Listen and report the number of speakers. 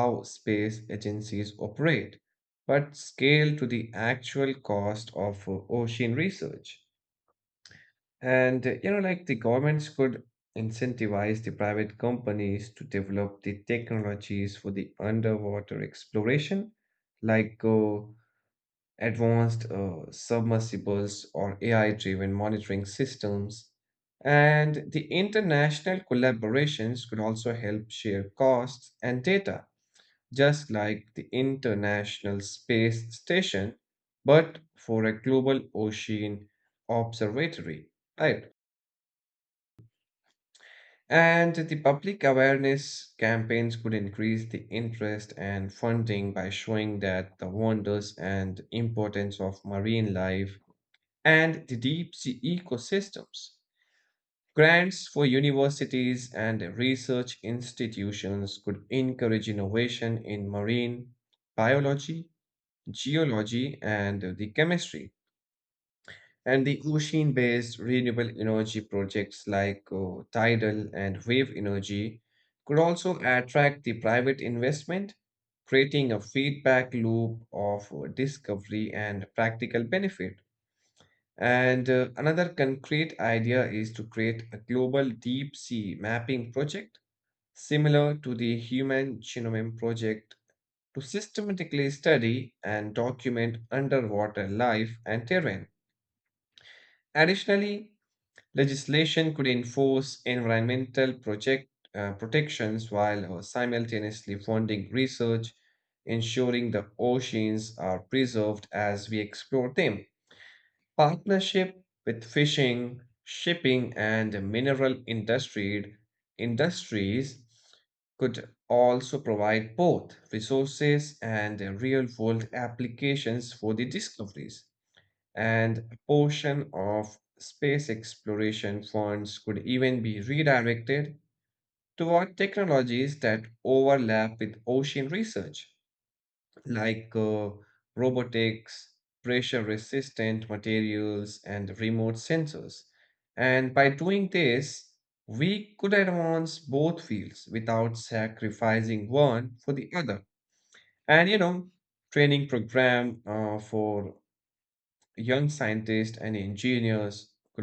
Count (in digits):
1